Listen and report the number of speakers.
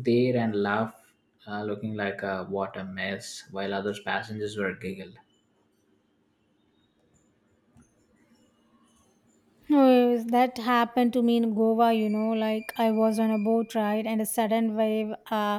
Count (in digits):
2